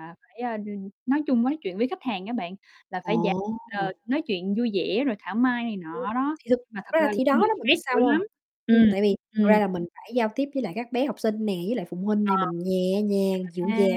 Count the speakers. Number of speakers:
two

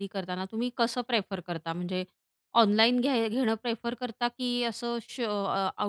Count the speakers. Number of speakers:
one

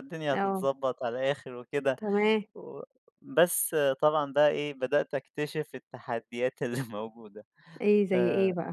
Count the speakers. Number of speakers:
two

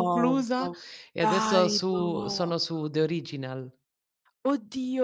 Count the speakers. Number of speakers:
two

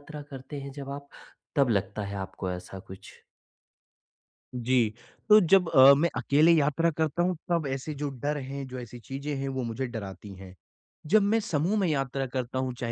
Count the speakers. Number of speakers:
two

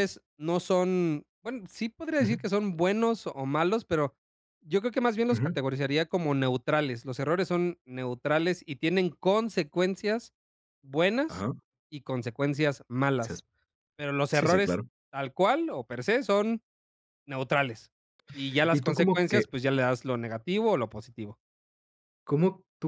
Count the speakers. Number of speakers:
two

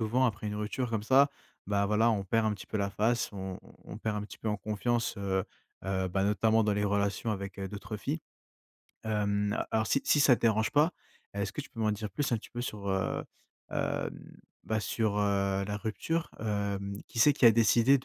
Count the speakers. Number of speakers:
one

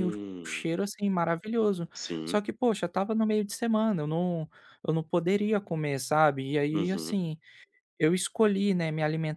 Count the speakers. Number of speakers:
two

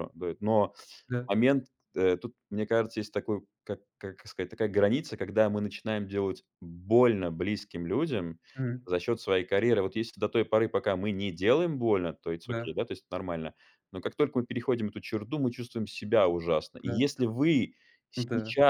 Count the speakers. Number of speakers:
two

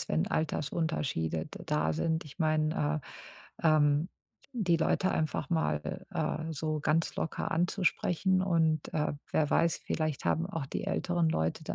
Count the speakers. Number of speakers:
one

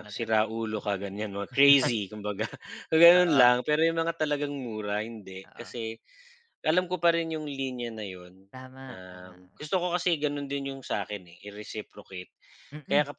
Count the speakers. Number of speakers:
two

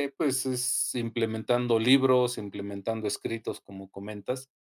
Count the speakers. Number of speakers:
one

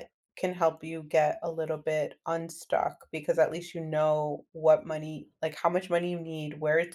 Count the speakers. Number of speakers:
one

